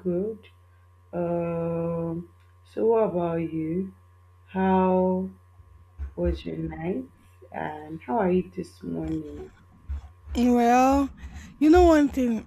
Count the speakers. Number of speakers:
two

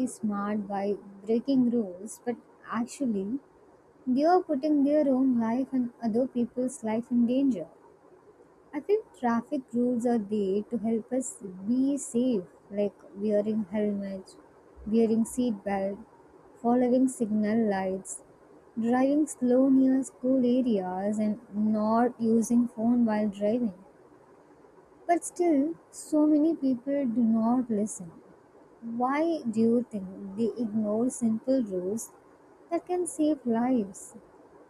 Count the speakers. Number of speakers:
one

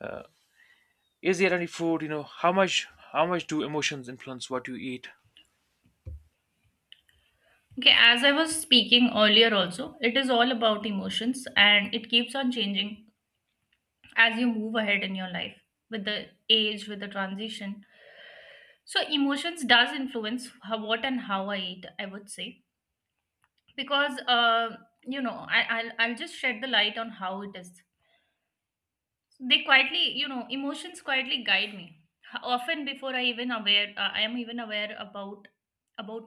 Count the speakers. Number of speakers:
two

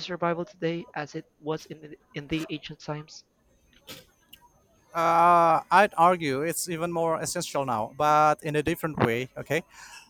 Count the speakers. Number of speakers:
two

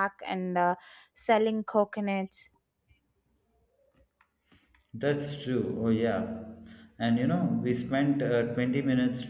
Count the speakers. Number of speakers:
two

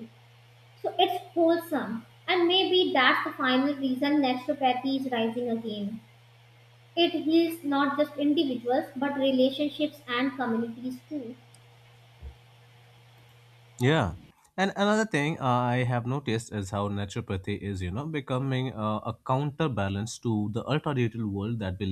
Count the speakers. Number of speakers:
two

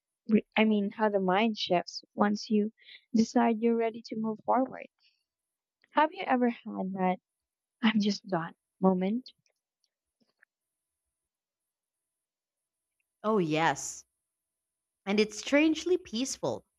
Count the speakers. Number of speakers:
two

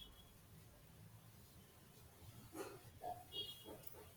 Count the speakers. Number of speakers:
zero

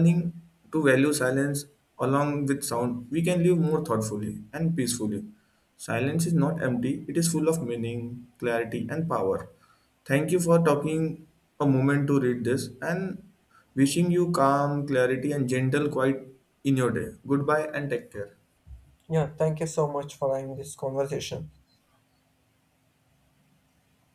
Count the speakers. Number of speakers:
two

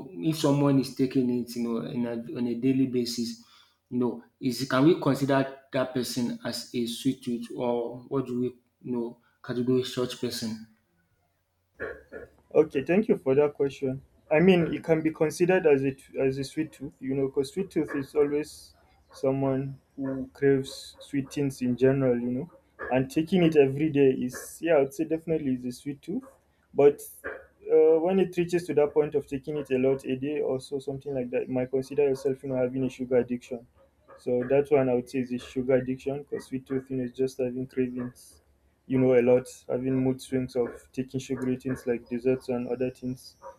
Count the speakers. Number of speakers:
two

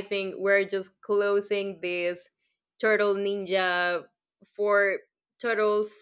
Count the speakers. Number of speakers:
one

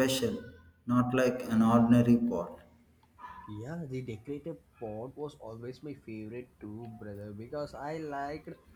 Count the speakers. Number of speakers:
two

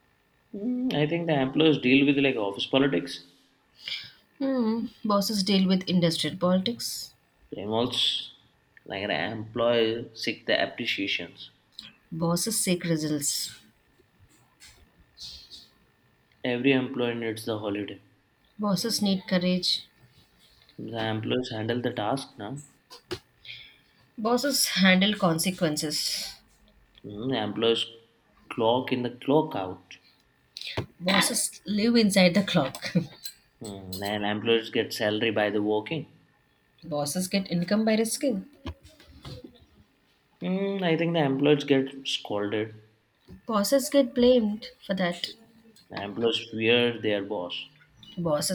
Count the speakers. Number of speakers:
two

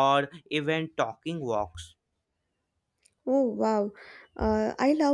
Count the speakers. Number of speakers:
two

